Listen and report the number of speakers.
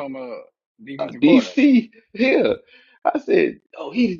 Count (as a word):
two